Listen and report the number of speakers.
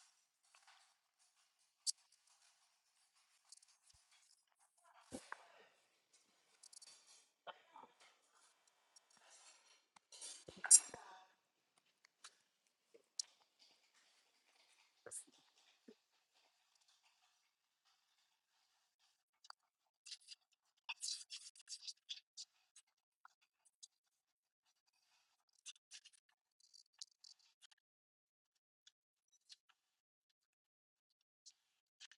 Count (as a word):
zero